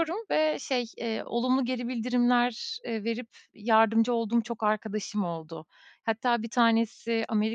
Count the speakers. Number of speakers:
1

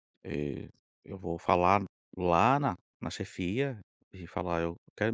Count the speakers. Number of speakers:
1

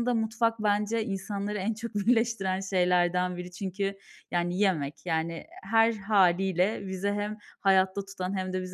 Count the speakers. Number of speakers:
1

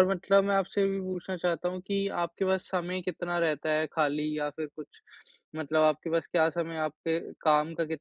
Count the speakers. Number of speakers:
1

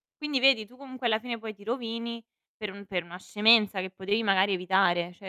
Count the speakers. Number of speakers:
1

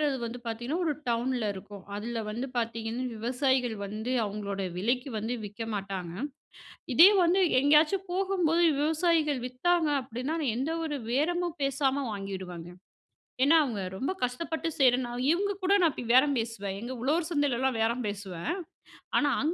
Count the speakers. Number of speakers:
1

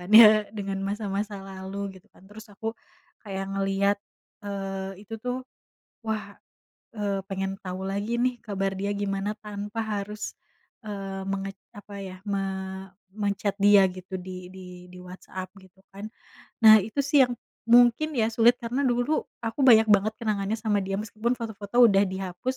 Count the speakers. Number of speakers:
1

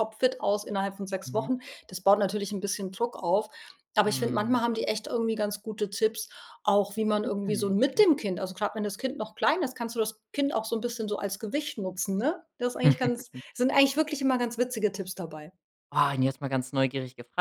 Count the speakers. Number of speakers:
2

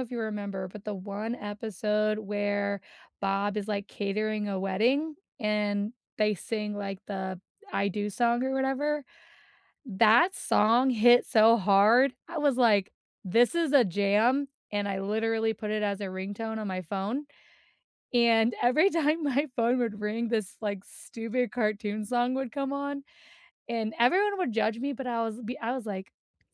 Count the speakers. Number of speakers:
1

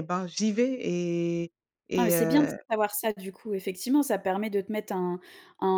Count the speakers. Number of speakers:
2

